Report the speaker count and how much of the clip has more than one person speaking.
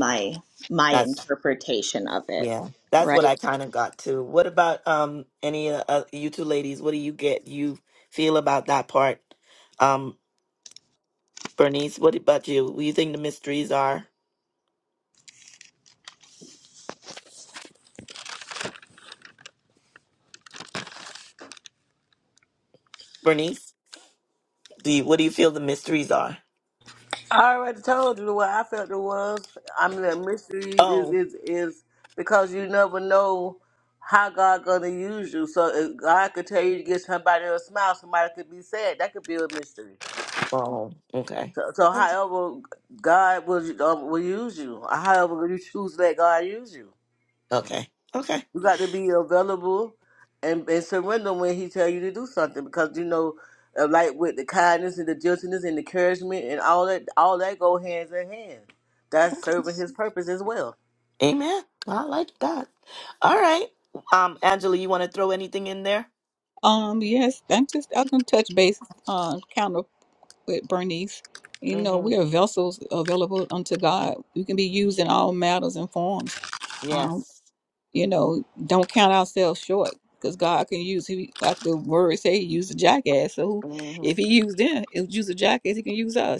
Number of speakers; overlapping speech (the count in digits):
4, about 2%